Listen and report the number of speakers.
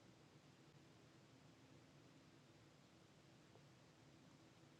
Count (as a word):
zero